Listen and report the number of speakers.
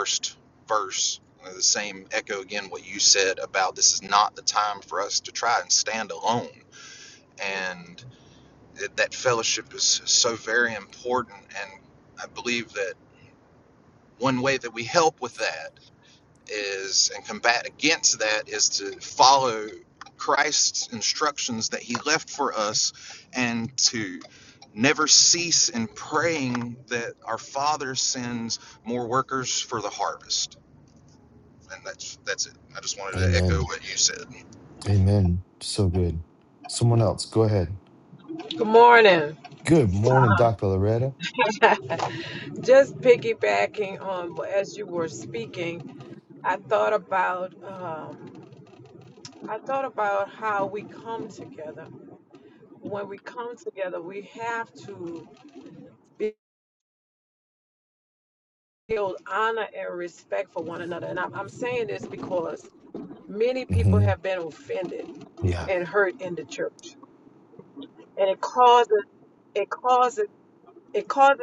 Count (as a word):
three